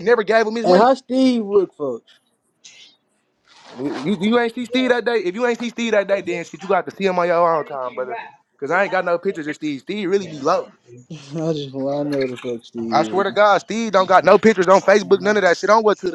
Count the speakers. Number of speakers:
two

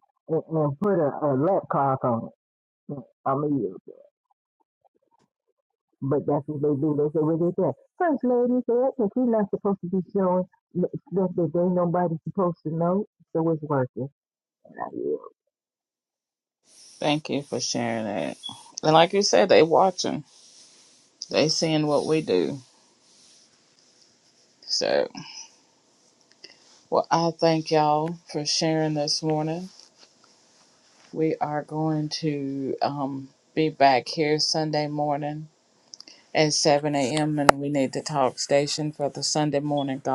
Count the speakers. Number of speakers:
two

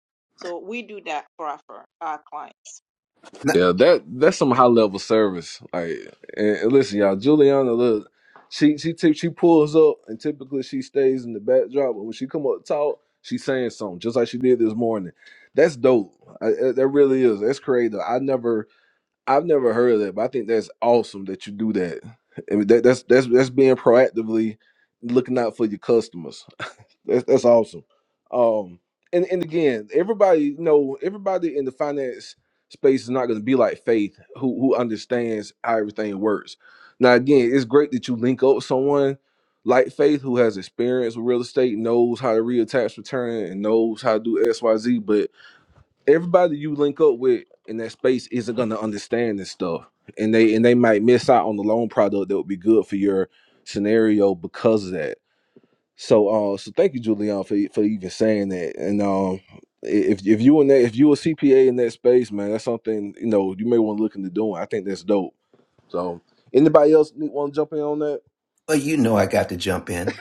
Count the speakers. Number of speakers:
three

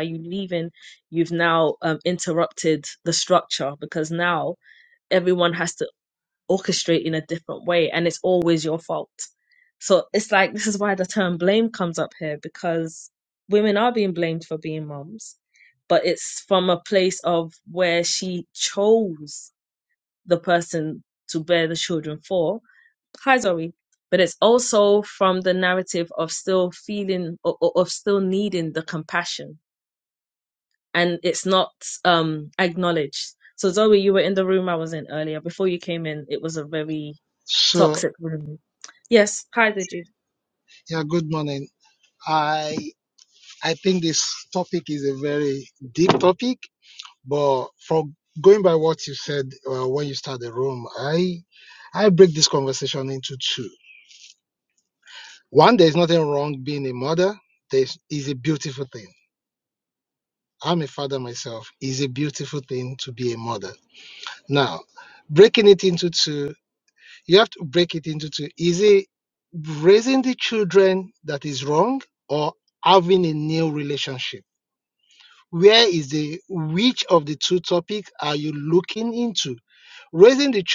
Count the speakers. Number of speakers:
two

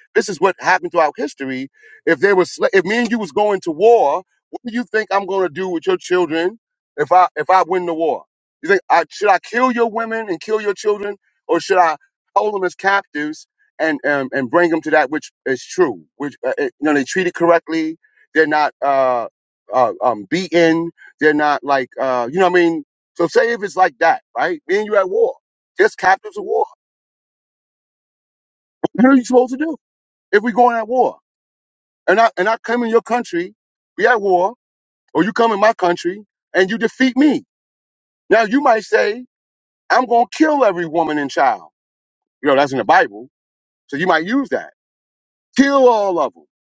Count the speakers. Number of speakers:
one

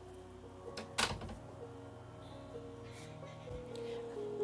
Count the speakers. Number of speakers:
zero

